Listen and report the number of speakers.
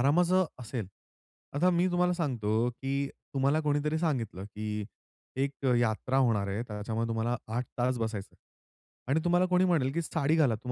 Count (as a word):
one